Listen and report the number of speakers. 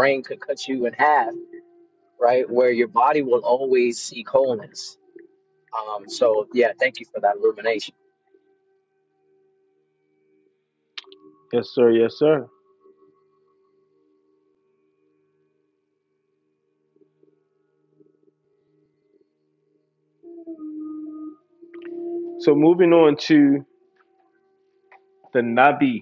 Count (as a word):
two